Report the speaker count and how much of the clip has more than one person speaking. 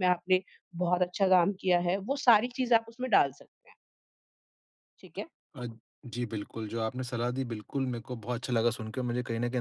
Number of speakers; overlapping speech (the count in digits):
2, no overlap